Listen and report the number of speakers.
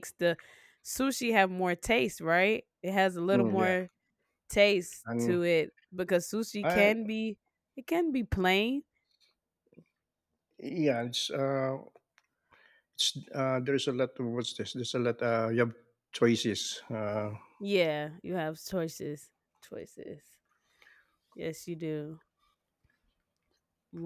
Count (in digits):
2